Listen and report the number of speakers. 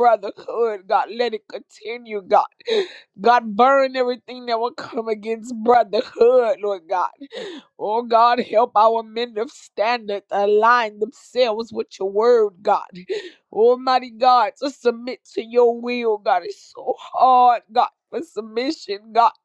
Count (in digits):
1